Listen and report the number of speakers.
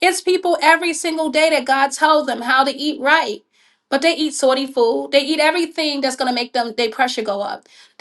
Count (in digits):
1